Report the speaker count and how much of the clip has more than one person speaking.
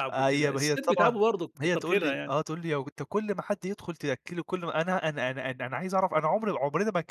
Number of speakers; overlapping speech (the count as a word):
two, about 24%